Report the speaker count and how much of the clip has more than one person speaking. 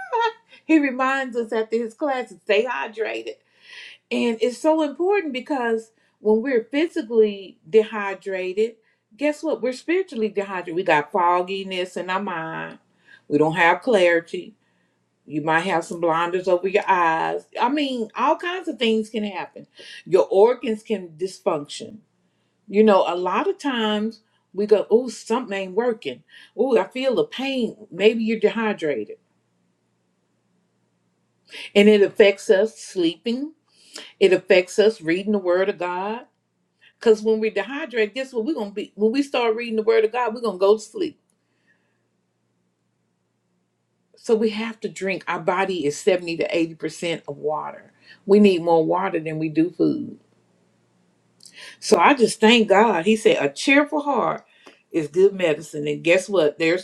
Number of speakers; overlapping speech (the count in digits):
1, no overlap